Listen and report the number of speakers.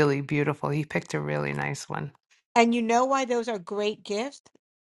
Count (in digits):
2